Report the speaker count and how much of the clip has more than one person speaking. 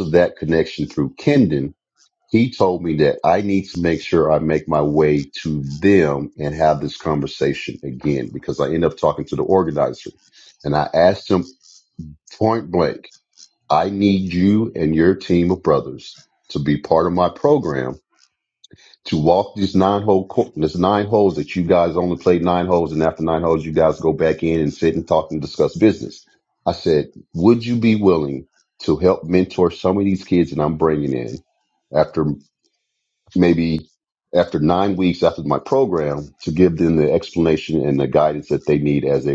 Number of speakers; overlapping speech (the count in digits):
1, no overlap